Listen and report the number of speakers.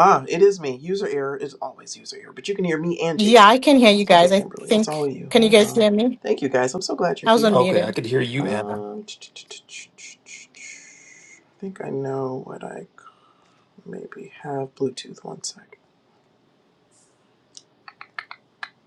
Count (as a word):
three